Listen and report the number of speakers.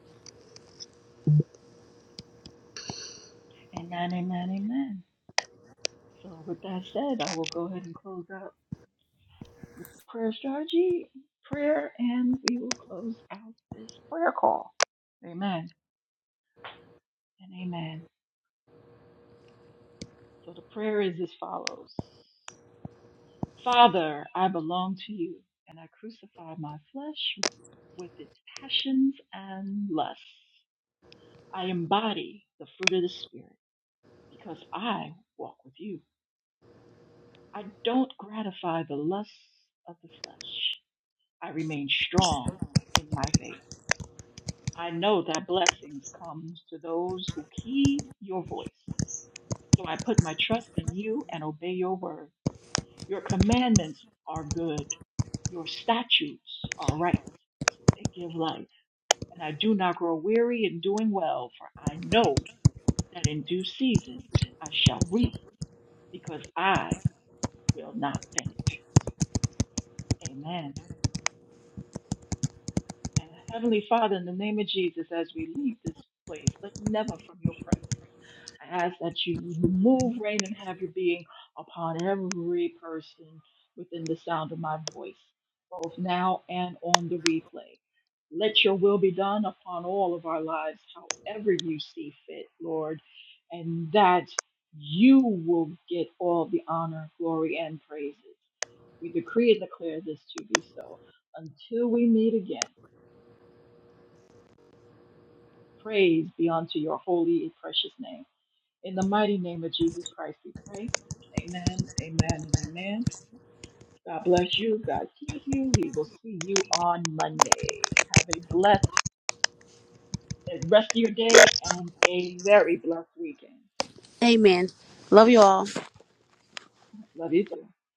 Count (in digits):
2